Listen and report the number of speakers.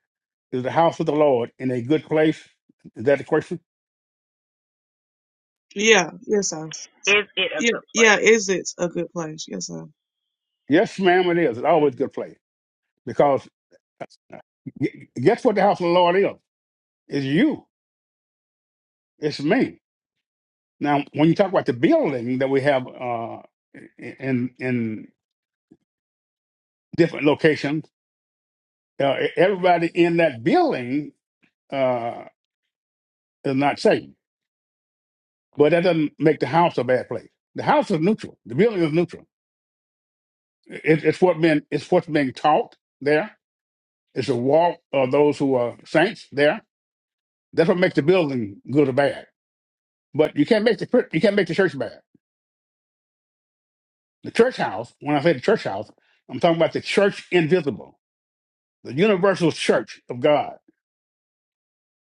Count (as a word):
three